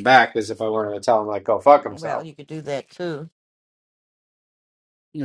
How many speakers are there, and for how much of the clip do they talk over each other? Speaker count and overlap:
2, about 6%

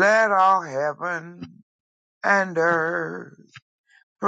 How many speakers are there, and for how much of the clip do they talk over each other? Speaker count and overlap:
1, no overlap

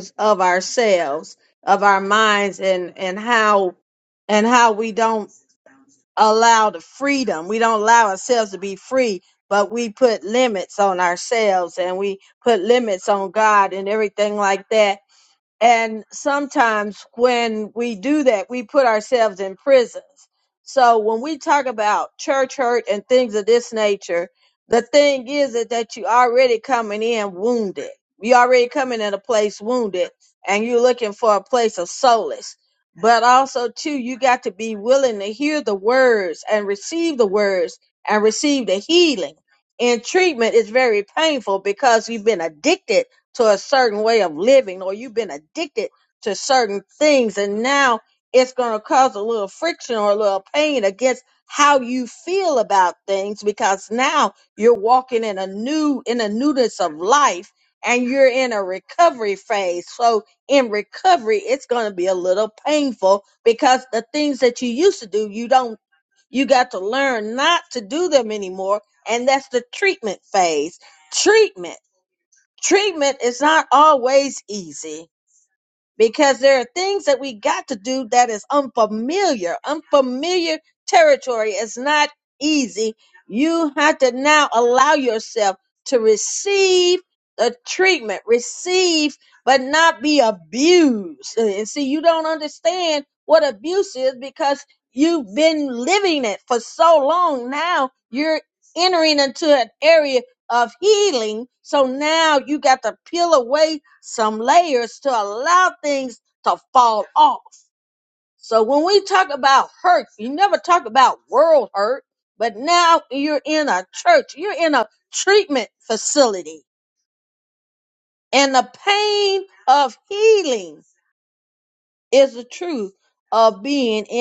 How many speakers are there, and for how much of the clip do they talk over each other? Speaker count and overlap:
1, no overlap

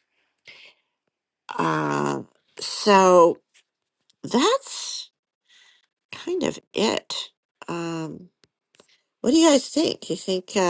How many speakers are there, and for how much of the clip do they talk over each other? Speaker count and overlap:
1, no overlap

